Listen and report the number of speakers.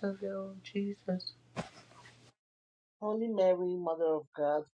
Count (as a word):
two